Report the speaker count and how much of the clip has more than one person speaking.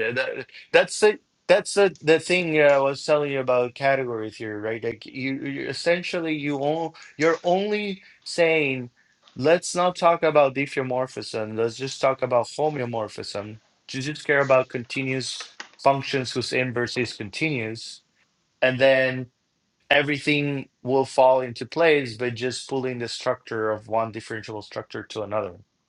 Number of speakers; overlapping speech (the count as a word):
one, no overlap